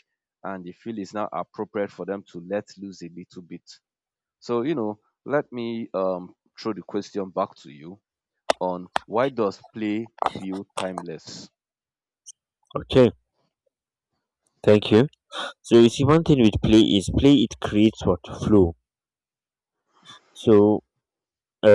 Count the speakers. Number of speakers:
2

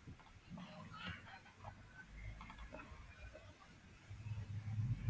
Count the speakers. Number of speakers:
0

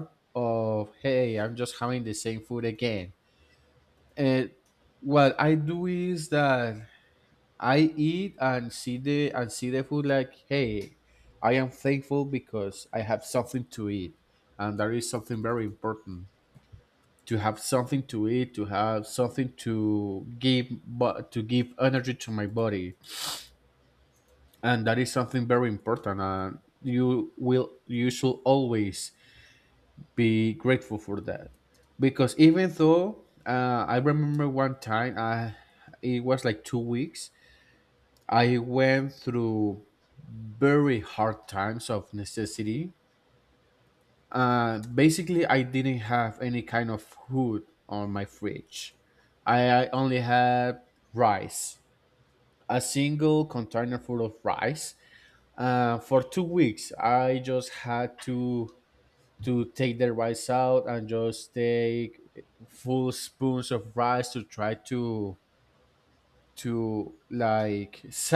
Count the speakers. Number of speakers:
1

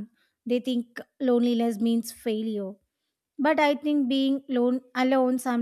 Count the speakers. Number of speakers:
1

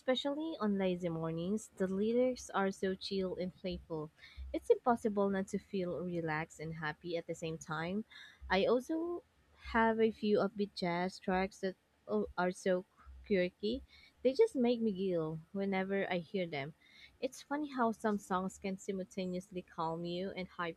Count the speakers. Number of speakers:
1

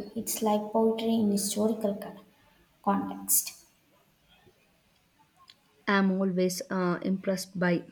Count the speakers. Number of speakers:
2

